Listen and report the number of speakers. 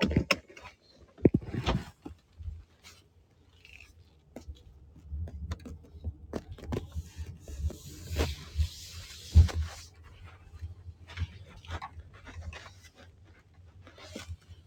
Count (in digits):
0